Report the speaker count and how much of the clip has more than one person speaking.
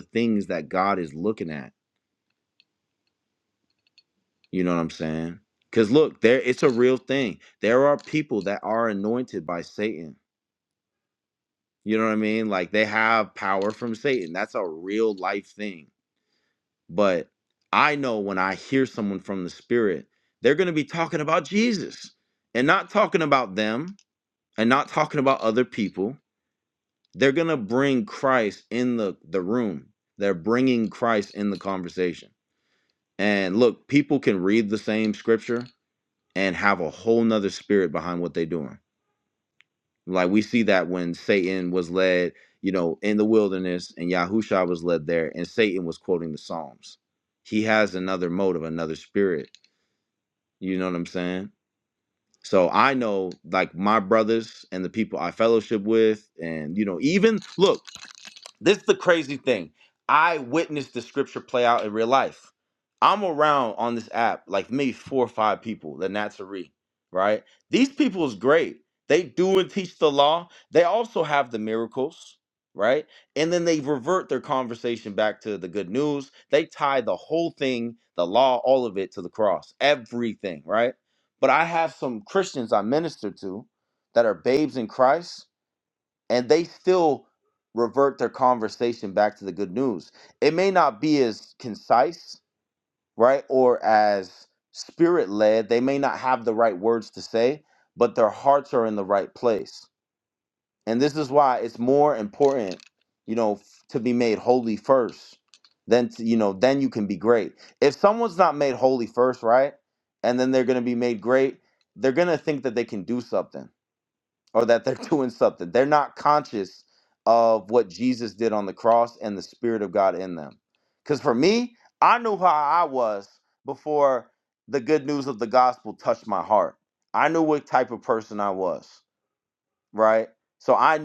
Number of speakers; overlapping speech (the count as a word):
one, no overlap